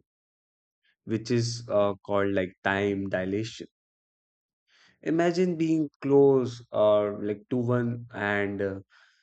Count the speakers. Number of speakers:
1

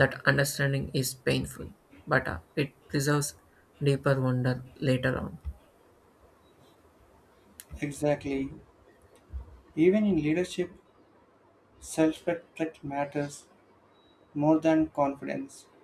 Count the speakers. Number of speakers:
2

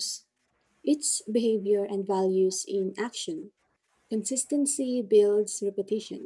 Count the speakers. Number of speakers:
1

